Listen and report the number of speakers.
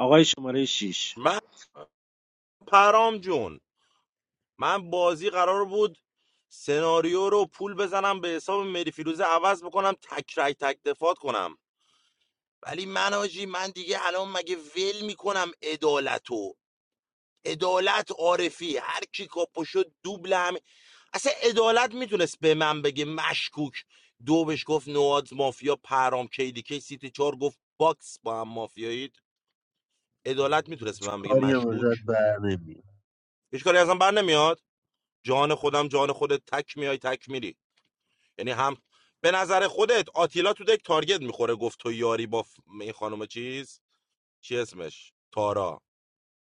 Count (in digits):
3